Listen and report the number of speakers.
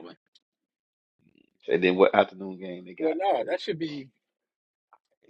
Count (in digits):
2